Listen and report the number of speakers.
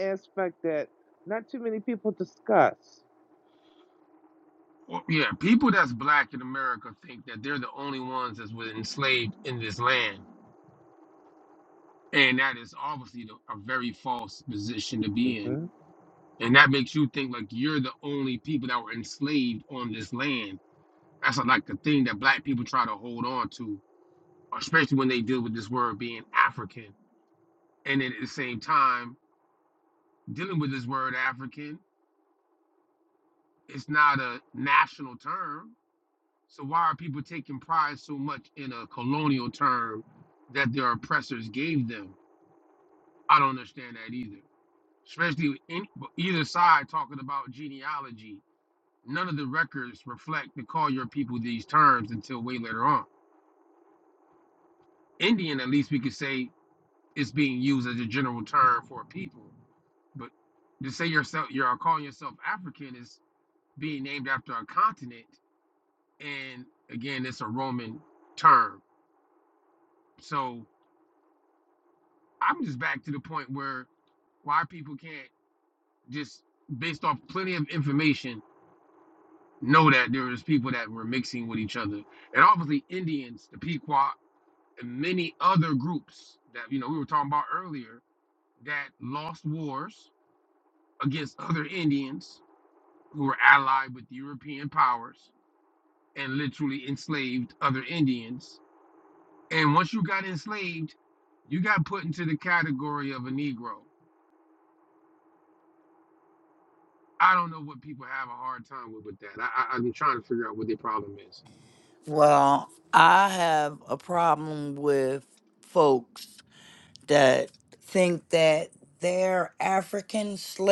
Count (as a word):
three